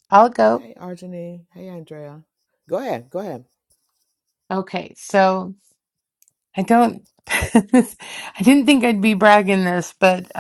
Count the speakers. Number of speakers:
two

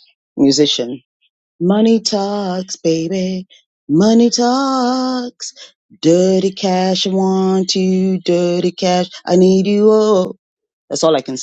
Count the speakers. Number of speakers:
one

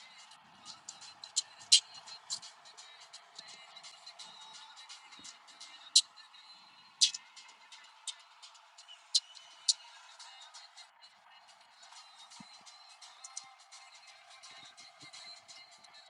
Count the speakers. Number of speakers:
zero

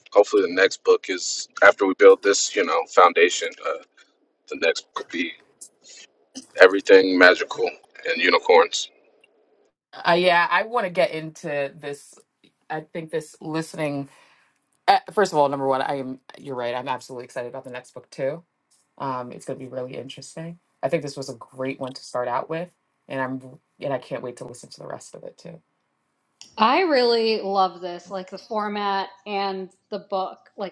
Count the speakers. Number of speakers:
three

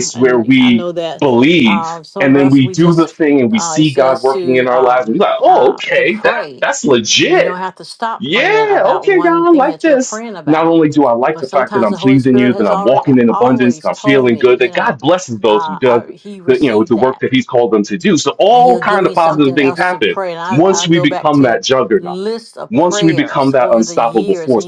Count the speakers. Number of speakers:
two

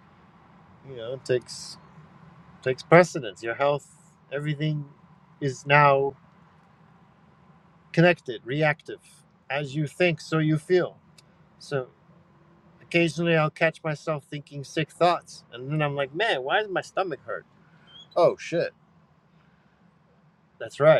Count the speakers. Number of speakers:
one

